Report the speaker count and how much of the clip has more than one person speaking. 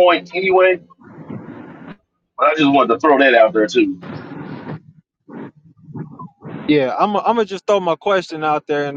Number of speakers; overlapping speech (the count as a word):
two, no overlap